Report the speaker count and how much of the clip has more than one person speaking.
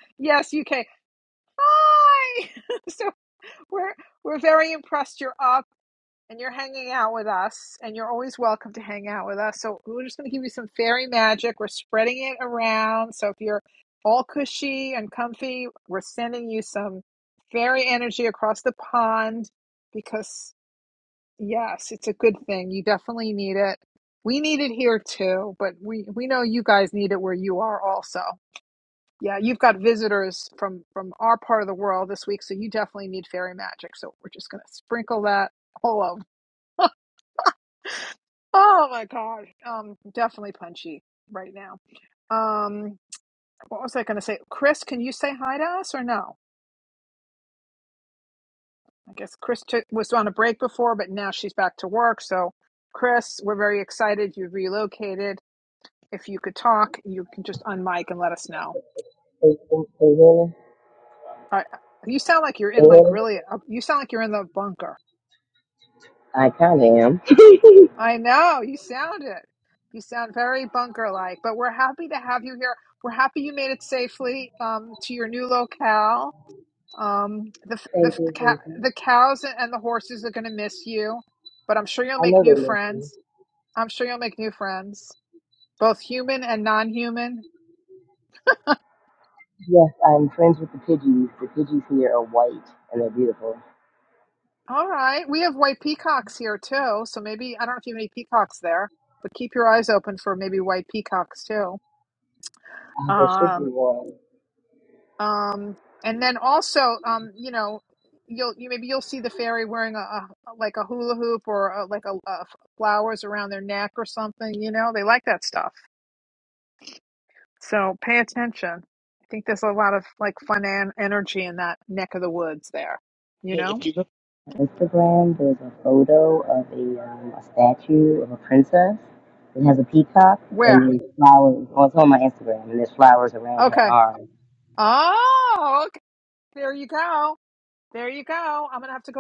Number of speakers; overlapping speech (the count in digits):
2, about 3%